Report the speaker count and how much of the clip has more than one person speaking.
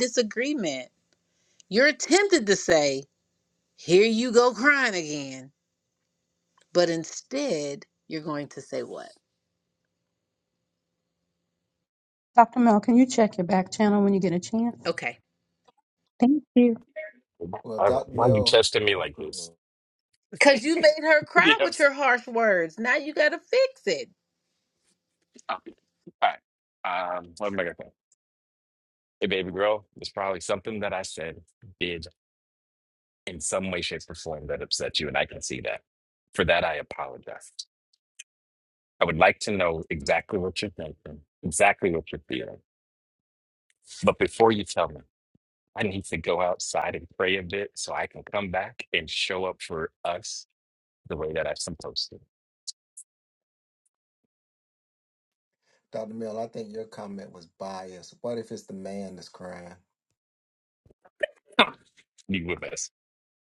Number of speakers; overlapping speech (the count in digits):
4, about 2%